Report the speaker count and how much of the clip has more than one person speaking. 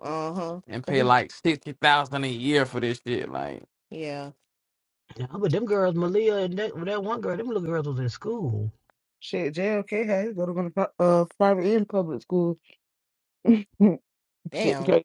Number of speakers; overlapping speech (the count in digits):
4, about 5%